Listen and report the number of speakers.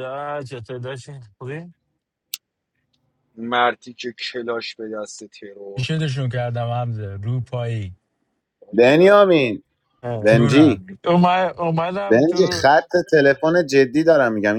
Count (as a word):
four